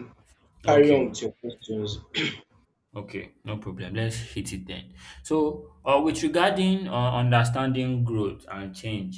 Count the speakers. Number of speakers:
2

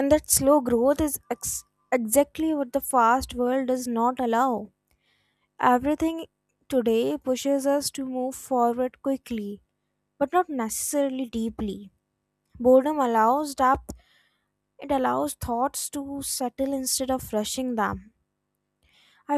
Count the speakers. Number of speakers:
1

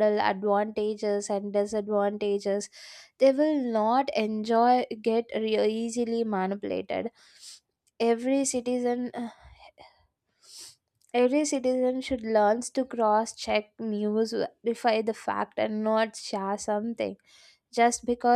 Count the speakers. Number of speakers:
1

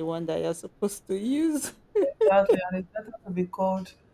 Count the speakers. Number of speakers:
2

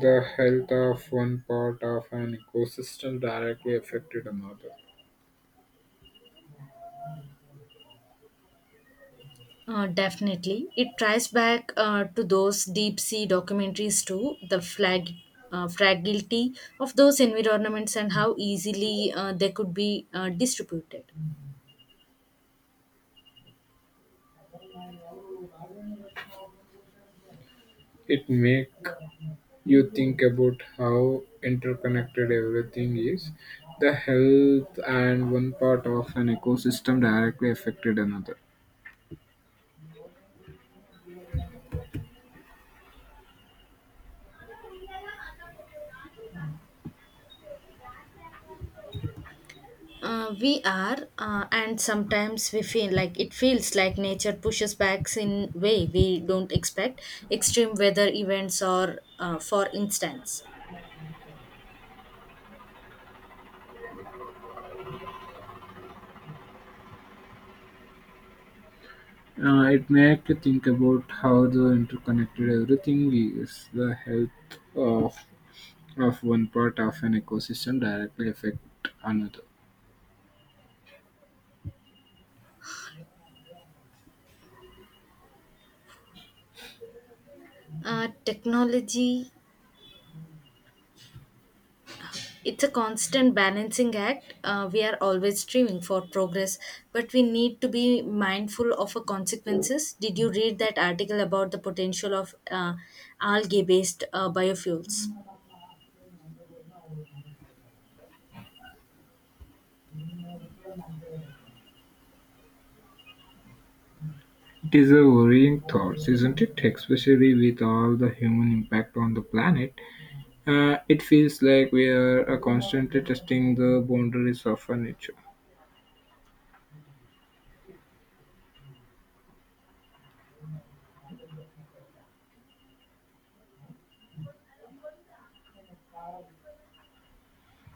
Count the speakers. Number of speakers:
2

